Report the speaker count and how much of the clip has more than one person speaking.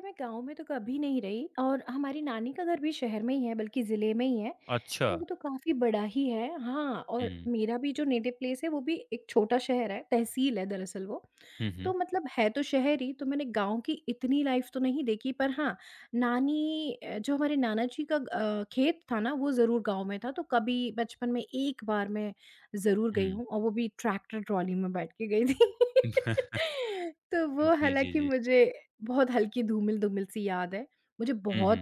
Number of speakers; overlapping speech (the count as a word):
two, about 5%